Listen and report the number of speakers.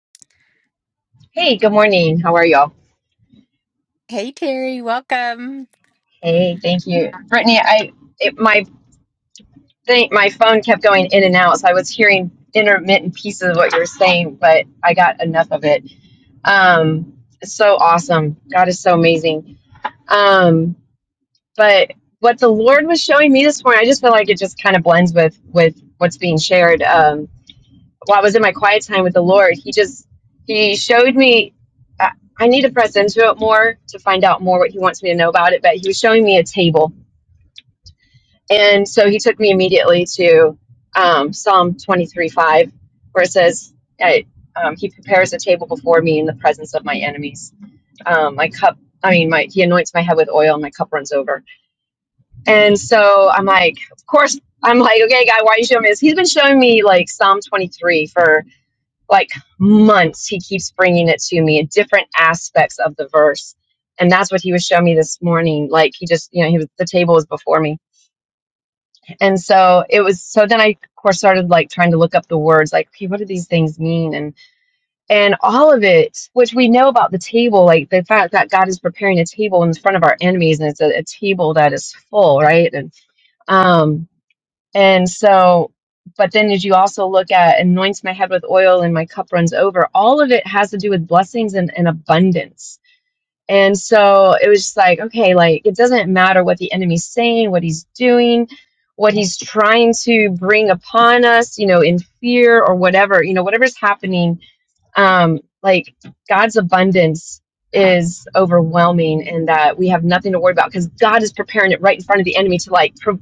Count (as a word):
two